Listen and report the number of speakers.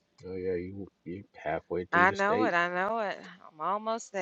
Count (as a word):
two